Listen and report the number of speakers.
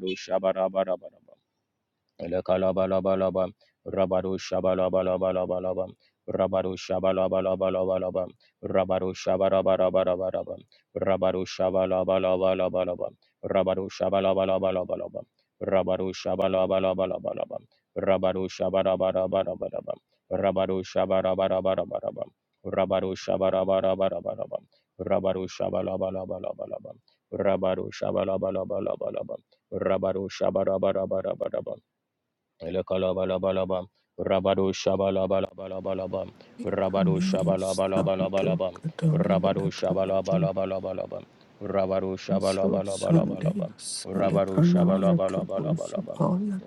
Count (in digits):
2